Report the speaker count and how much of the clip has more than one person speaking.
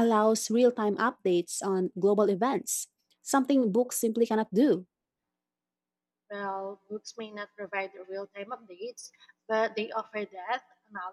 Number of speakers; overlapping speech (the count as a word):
two, no overlap